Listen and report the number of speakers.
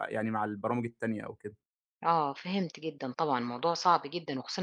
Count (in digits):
2